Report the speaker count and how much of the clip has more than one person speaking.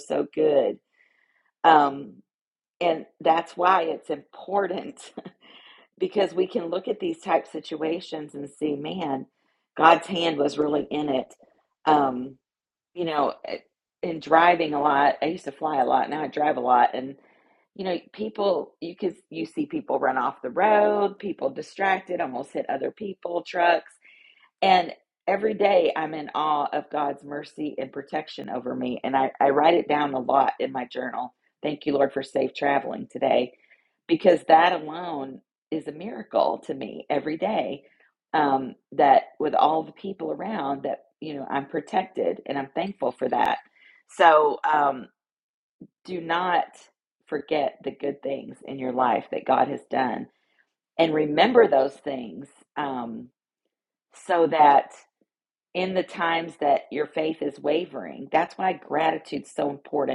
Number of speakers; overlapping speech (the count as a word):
one, no overlap